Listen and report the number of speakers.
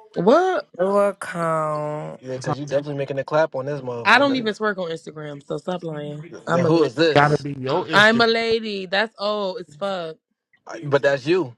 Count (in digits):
4